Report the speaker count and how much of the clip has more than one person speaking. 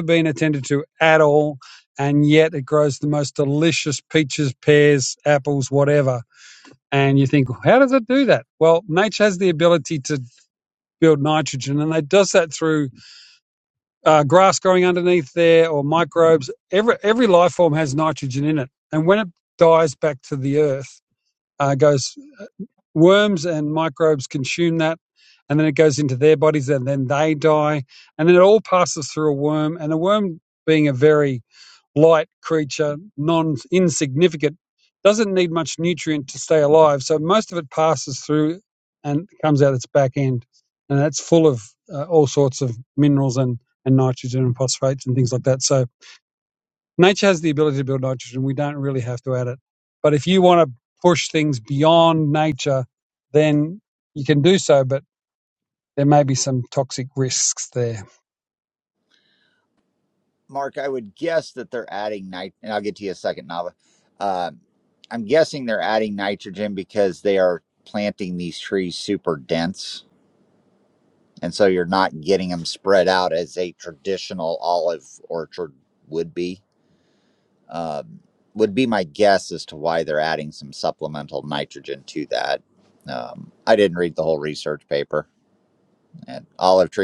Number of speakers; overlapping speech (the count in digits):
2, no overlap